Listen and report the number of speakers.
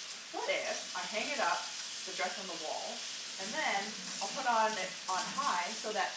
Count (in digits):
1